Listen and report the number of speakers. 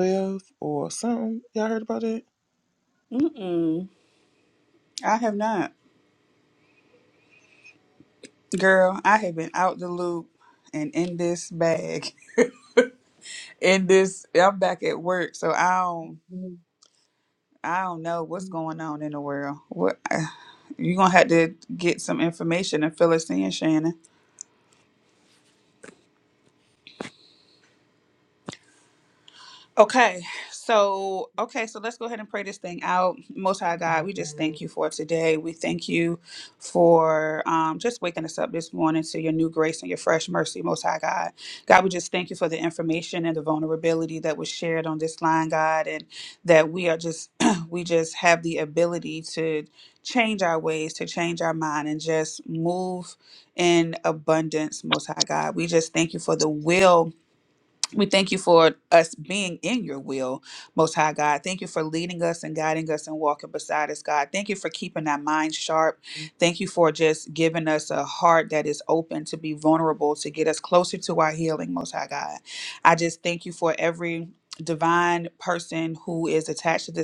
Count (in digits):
2